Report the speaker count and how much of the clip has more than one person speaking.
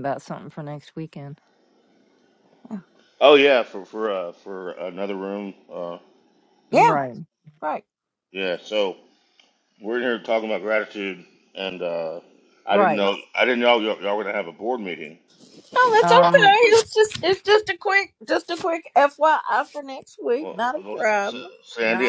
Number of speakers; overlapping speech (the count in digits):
3, about 11%